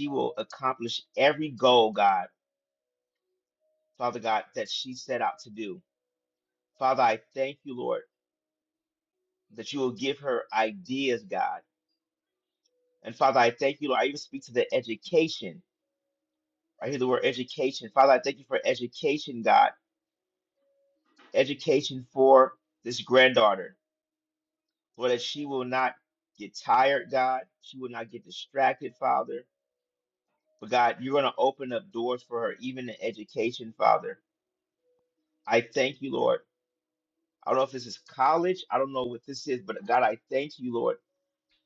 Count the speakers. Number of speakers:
1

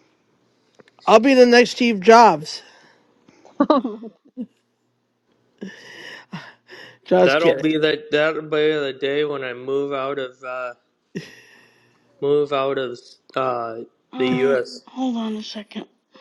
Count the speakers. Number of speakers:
3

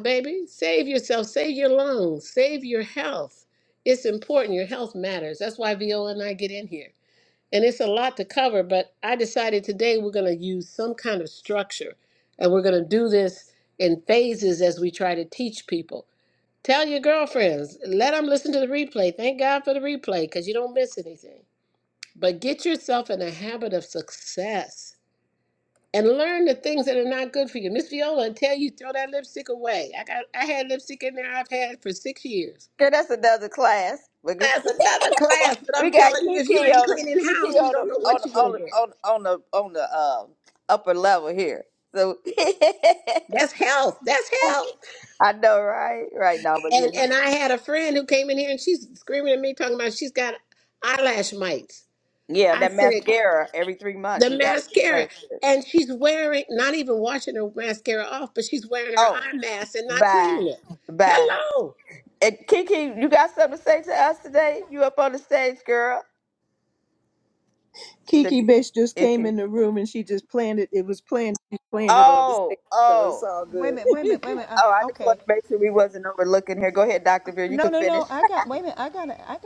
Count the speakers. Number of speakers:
4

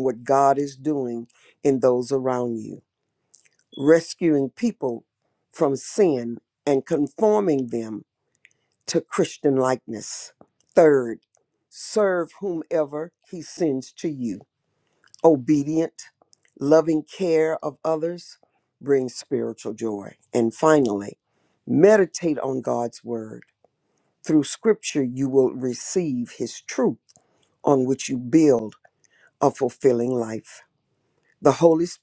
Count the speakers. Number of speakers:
1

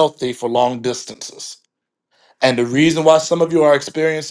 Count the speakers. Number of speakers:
1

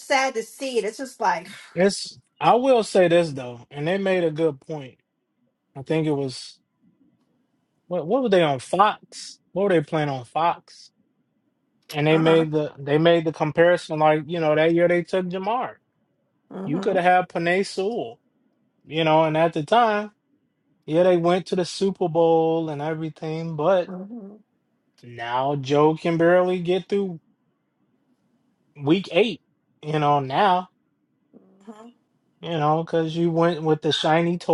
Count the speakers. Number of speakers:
2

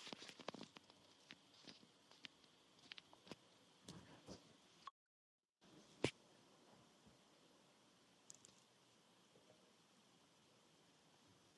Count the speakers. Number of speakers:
0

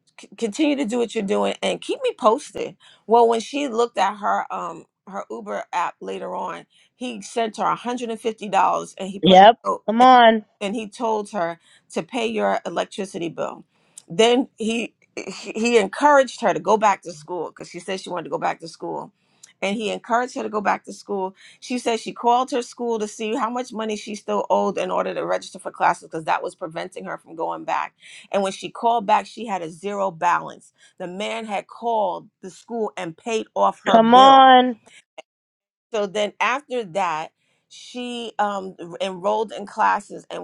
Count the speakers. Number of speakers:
2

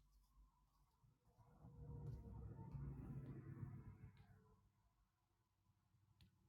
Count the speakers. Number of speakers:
0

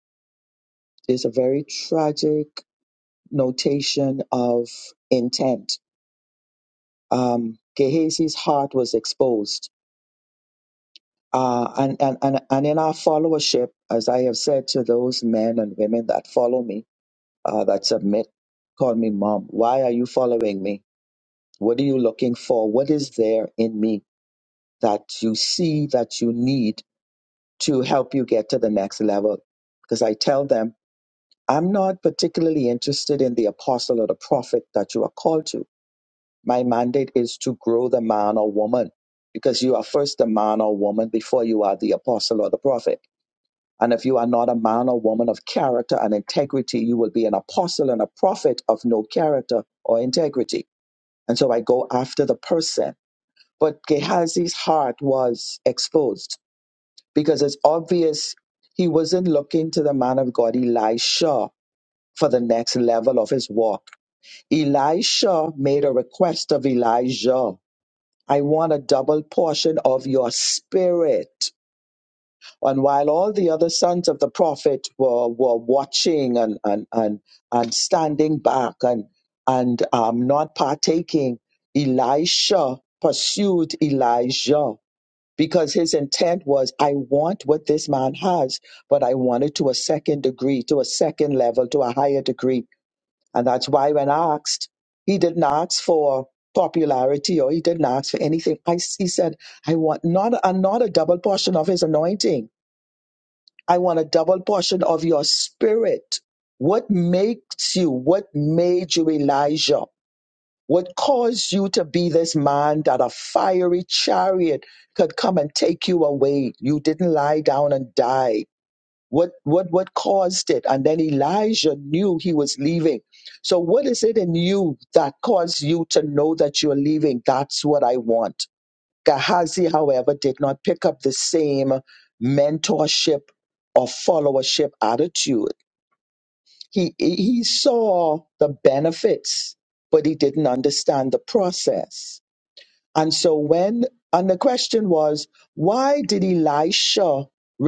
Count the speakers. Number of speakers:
1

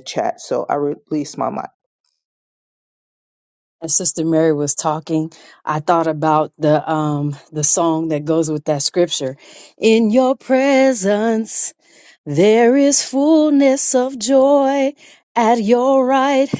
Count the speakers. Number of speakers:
2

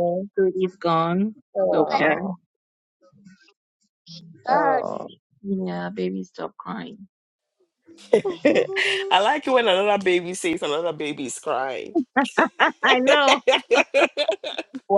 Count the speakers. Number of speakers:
3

